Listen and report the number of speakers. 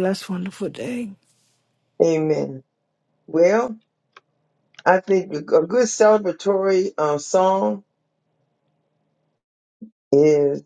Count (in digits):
2